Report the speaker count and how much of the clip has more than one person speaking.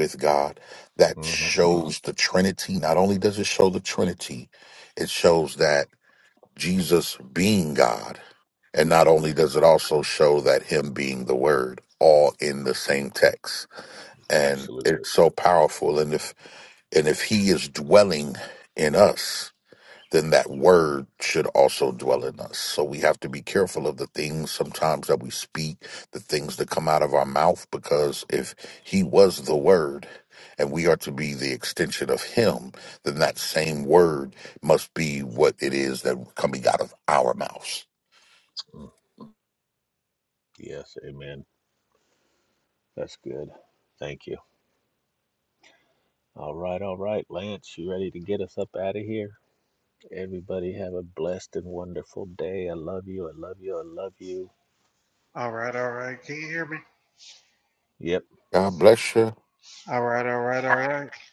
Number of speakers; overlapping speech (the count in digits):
3, about 2%